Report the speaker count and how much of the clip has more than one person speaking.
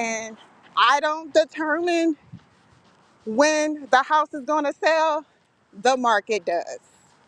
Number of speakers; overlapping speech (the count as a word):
one, no overlap